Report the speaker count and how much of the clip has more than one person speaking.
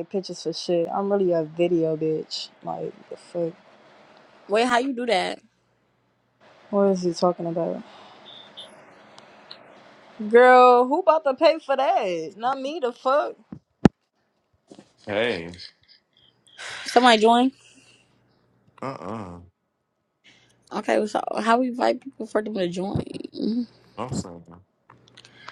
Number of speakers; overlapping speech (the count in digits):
3, no overlap